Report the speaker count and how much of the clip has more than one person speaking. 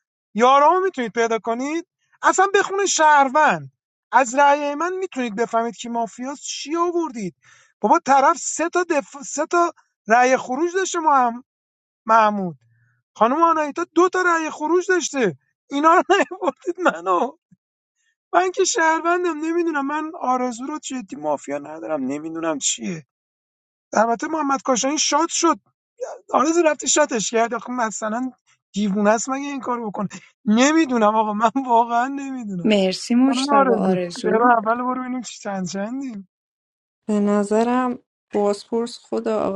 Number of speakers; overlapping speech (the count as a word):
three, about 3%